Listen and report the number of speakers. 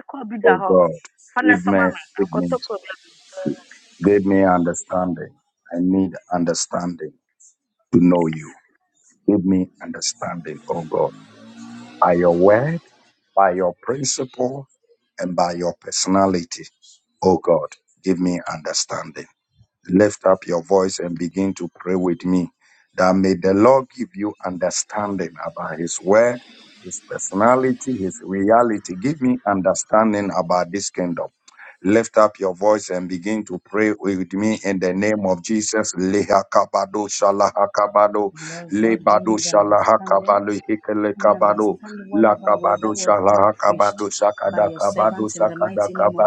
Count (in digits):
3